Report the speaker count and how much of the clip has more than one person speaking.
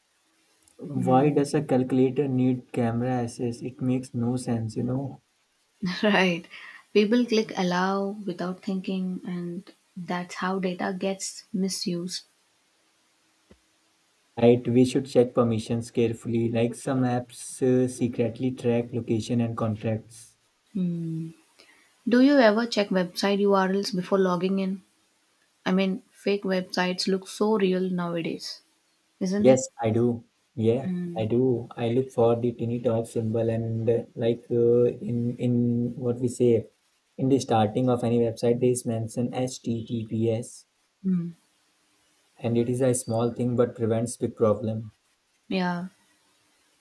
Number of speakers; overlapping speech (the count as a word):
two, about 2%